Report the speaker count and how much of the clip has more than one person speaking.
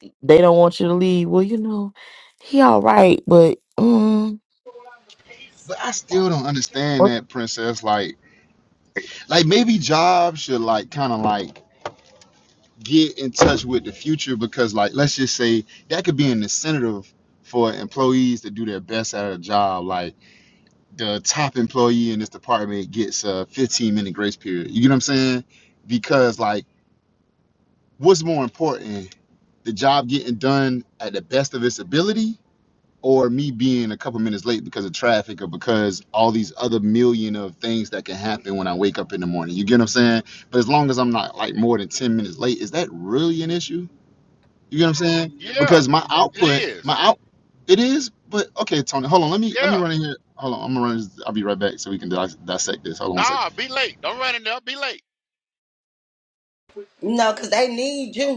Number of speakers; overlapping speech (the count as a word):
four, about 3%